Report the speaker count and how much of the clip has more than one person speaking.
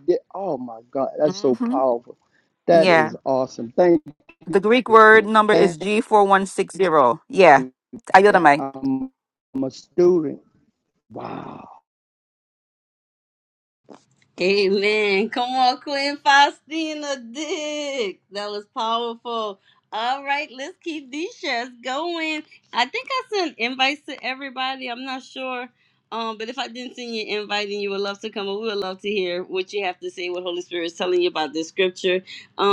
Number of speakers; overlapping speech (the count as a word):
three, about 6%